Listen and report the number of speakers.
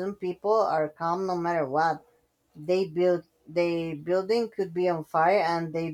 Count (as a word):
one